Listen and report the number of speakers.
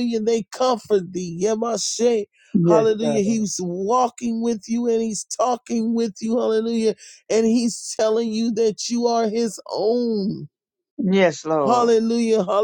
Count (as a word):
two